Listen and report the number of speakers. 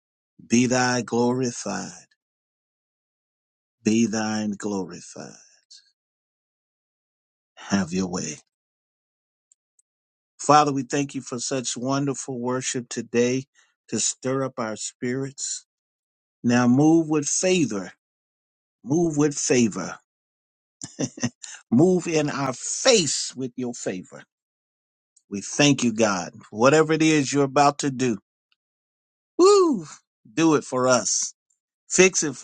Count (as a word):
one